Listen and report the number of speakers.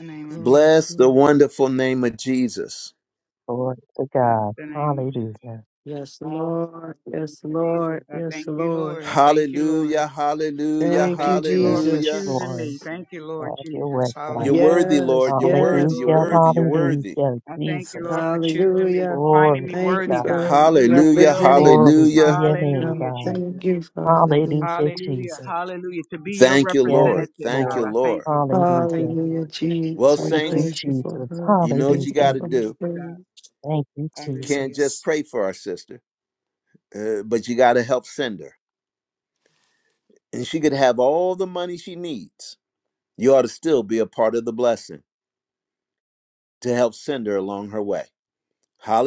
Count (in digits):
4